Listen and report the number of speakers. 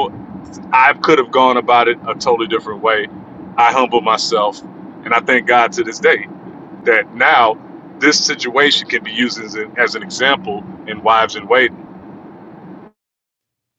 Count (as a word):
one